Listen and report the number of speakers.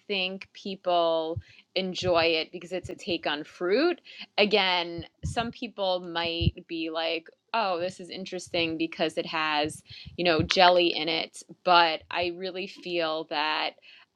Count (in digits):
1